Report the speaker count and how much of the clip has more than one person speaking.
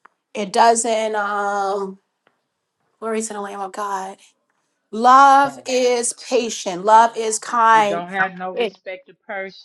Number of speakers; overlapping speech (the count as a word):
two, about 7%